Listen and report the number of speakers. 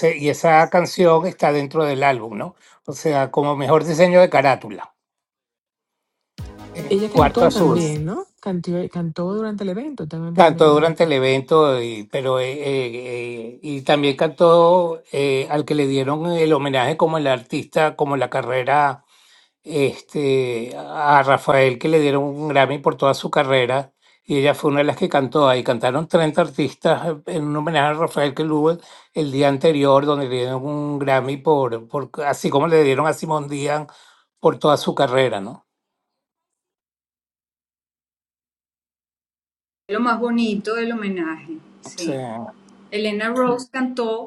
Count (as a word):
three